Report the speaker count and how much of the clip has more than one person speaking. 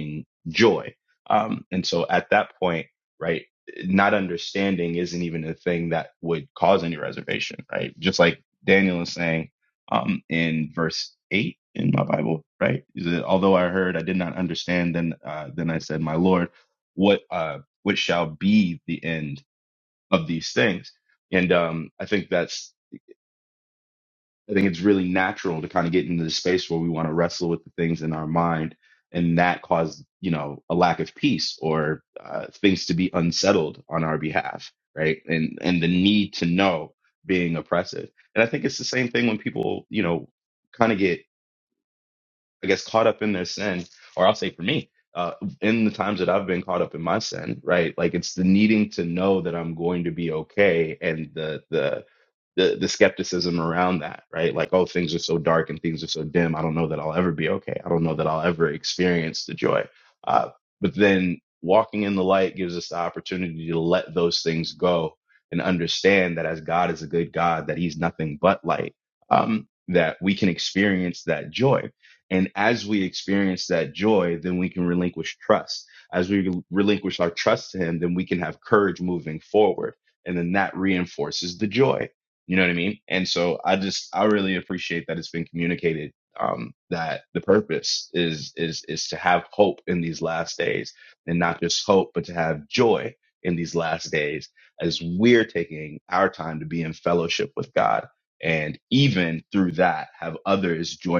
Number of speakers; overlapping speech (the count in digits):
1, no overlap